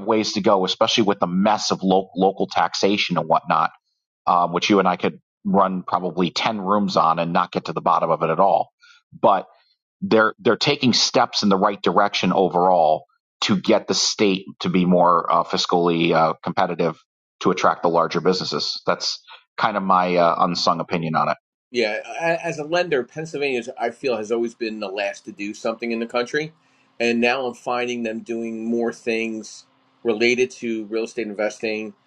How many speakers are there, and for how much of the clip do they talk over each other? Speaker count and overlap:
two, no overlap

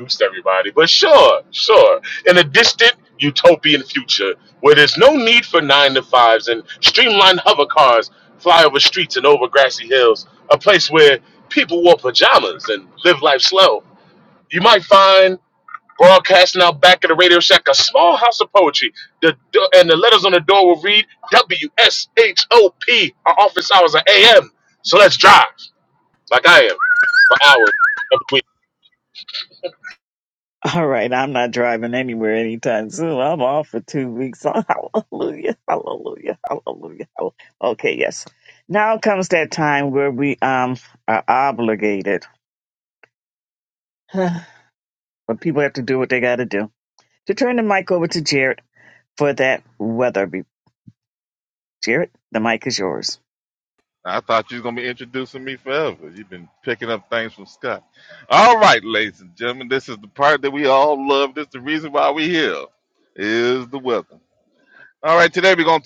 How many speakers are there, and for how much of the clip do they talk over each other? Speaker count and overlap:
three, no overlap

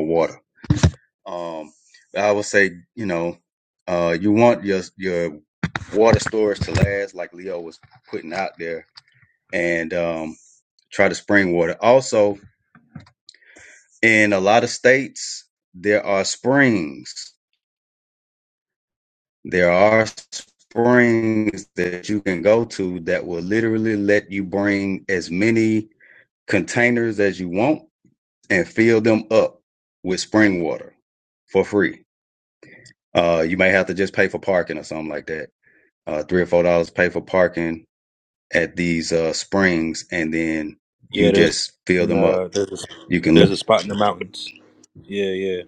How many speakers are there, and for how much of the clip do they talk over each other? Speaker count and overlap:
two, about 2%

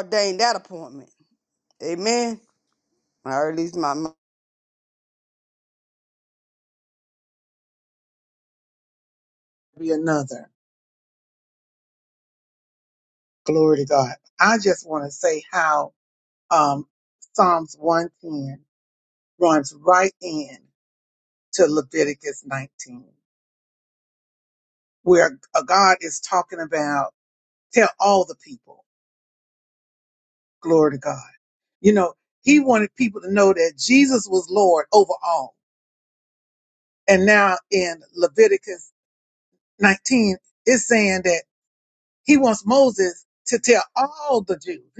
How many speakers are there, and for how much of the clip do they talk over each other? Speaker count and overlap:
two, no overlap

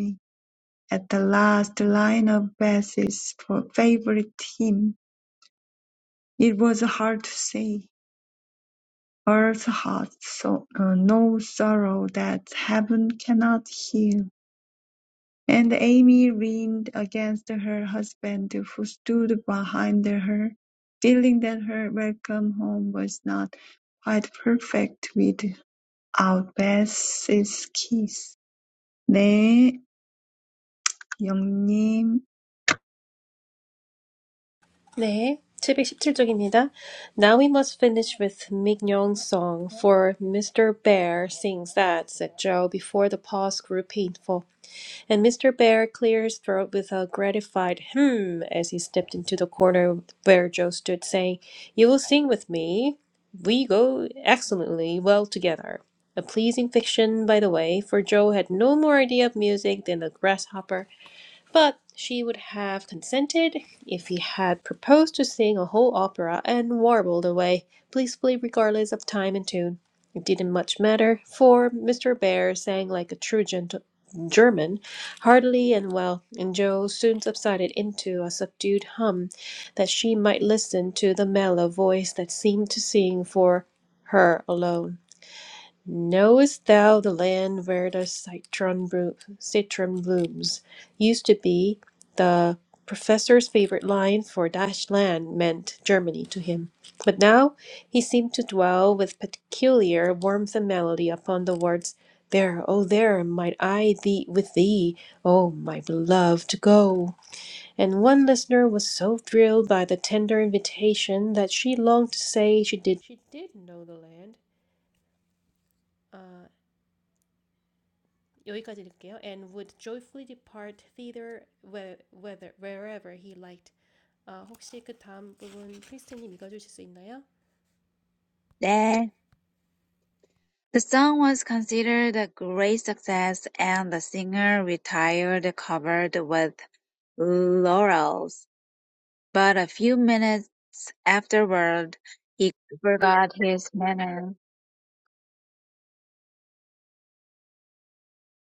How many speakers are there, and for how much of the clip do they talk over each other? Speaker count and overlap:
three, no overlap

